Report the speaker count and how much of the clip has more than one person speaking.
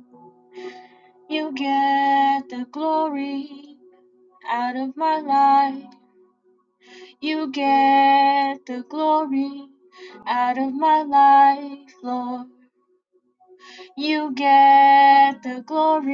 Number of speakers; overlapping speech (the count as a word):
one, no overlap